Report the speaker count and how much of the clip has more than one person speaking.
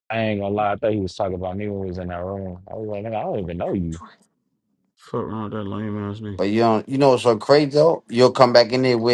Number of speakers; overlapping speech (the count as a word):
three, no overlap